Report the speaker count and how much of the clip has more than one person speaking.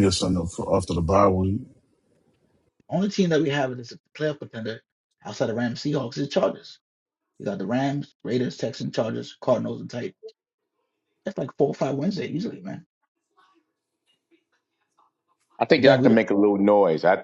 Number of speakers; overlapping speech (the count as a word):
three, about 3%